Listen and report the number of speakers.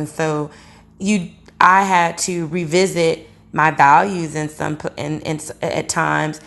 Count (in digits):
1